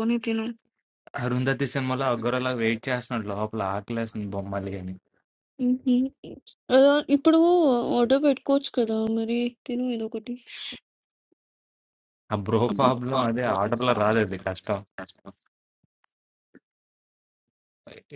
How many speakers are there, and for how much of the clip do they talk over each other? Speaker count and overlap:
two, no overlap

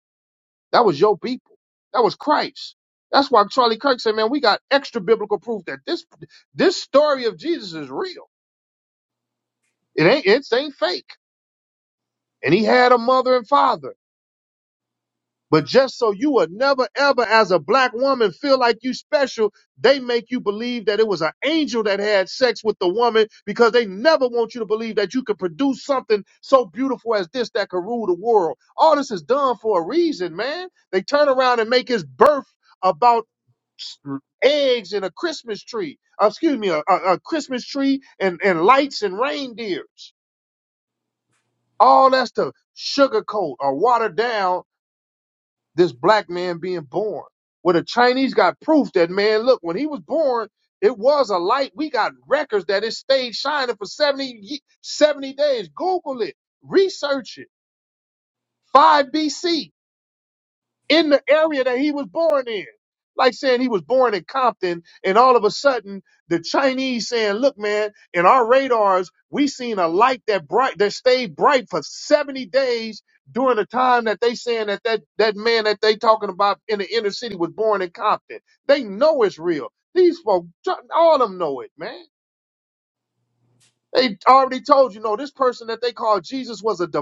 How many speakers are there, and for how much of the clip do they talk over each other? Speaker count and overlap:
one, no overlap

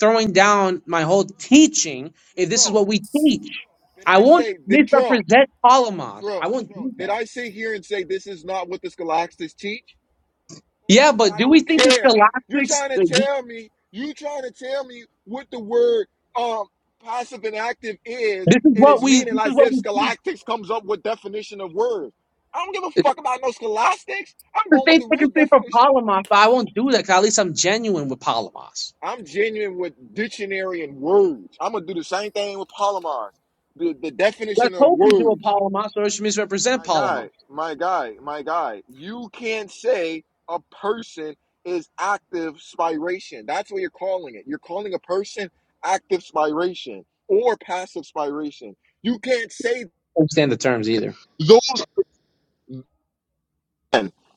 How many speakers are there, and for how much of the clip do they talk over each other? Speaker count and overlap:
two, about 15%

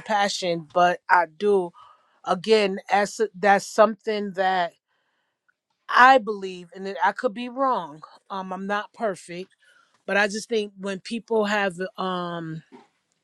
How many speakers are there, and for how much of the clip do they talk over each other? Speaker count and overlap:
one, no overlap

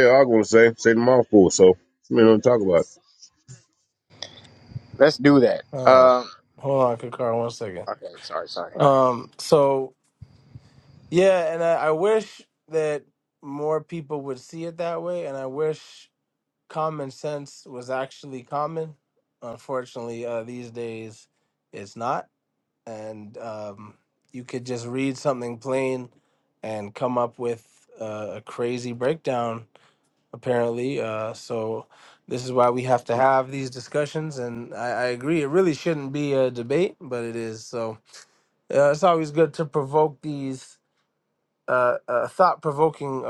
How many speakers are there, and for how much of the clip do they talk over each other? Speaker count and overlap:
three, about 1%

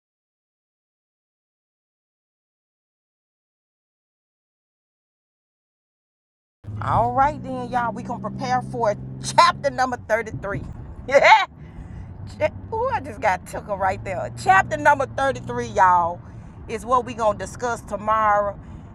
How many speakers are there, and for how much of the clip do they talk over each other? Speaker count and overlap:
one, no overlap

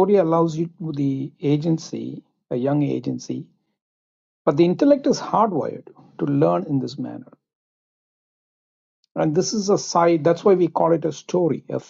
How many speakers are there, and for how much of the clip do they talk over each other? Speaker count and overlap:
one, no overlap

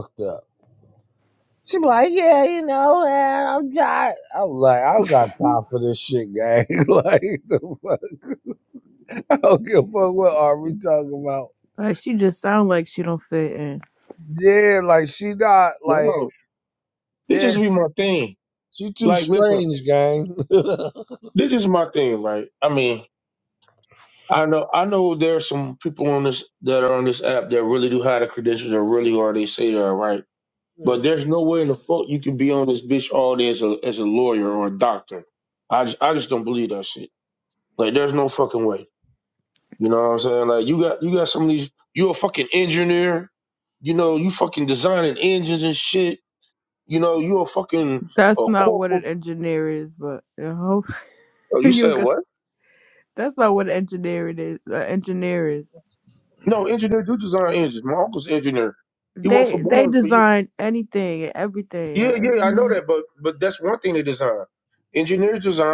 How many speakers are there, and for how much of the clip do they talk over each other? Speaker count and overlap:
three, about 6%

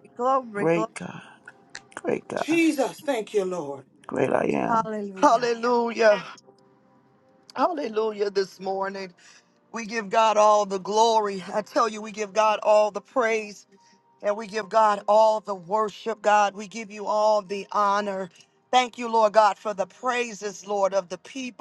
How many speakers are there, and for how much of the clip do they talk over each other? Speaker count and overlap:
four, about 4%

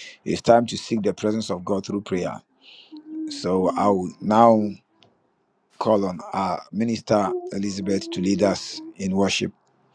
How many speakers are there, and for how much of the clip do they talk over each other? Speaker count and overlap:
one, no overlap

